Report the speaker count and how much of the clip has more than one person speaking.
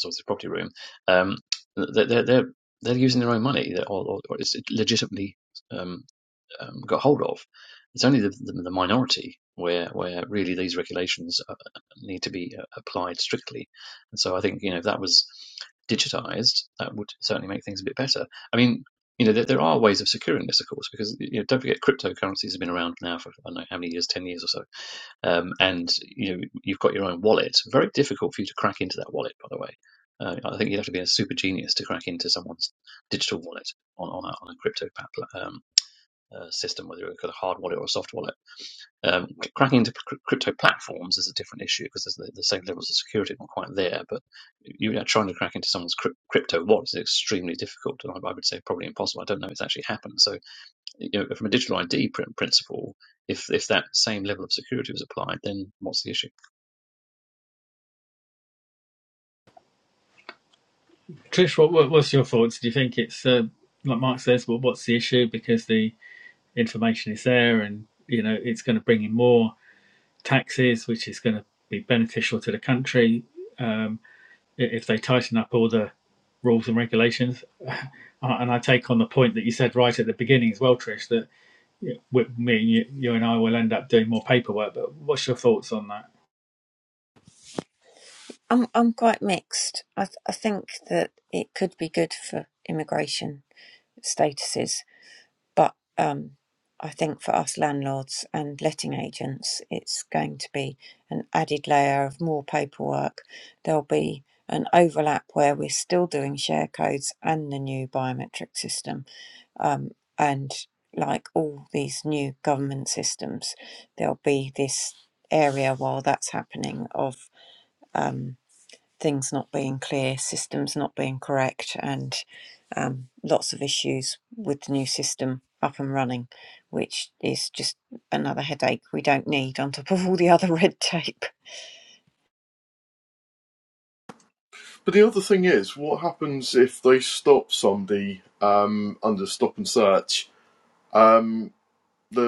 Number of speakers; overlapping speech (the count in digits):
4, no overlap